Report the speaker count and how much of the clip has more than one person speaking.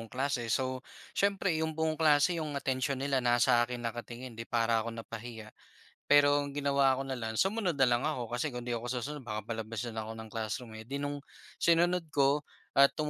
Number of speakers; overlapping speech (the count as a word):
one, no overlap